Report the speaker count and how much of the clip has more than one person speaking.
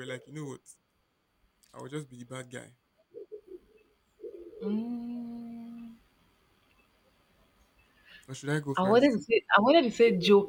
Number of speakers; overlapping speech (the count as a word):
two, about 2%